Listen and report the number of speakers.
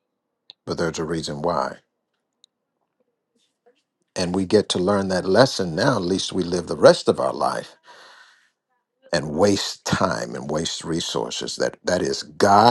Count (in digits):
1